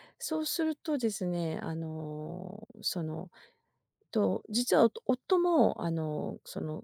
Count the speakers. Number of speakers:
1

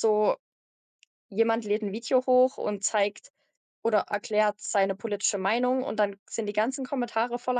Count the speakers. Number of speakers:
1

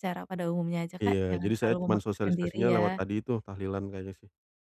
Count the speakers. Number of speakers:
2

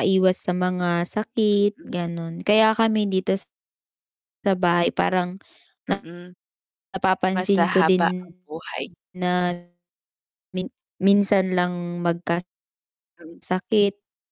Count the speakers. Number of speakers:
2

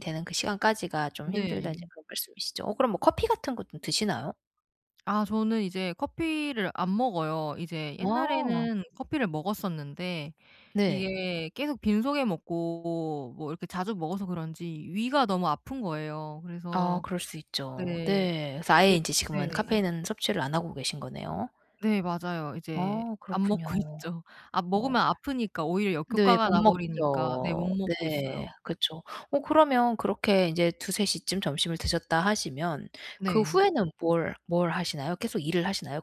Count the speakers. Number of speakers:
2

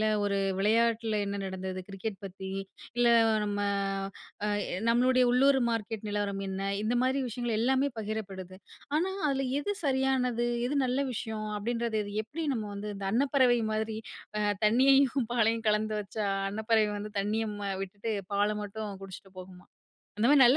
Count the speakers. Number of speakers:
1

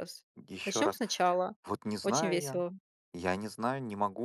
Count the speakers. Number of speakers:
2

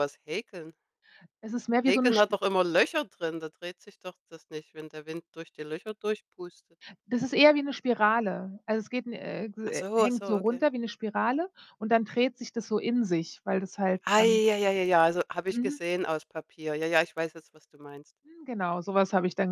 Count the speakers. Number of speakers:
2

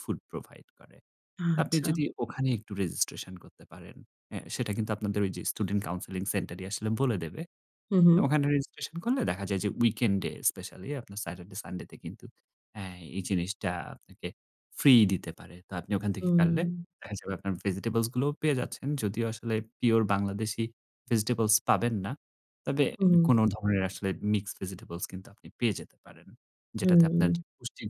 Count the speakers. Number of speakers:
2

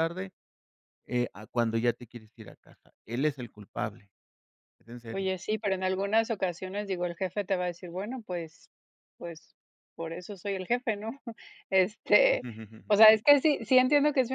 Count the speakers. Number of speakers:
2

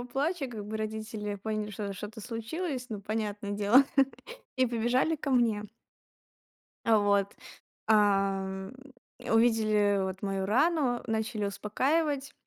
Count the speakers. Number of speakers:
1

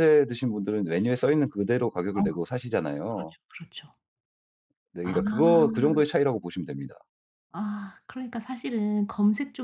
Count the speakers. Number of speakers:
2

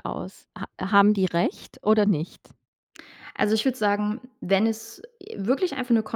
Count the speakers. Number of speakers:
2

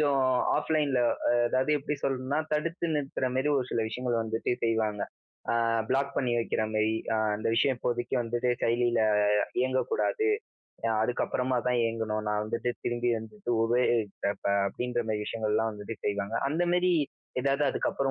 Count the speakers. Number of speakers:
1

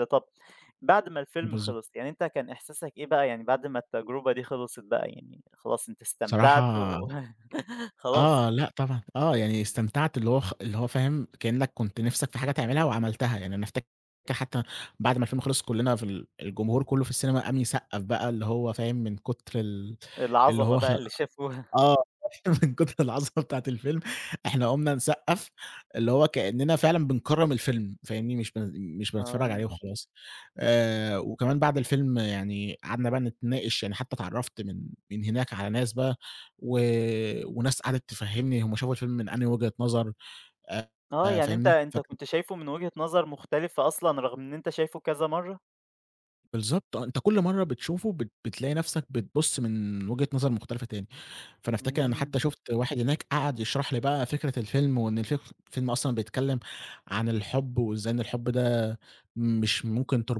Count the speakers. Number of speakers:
2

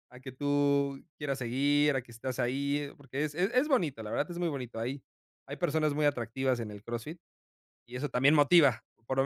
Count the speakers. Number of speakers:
1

